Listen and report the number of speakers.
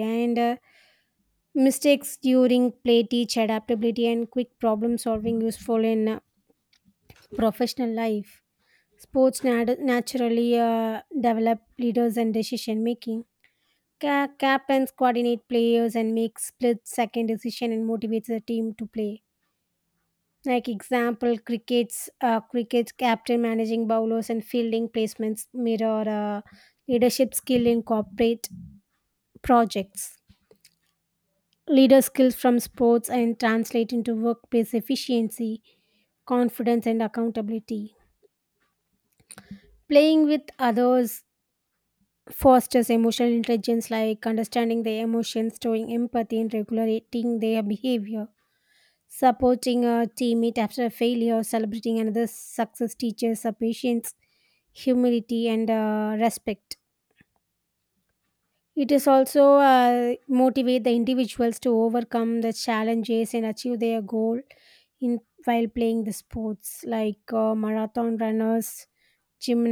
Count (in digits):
1